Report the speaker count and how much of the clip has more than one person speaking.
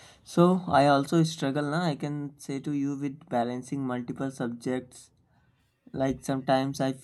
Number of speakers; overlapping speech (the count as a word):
one, no overlap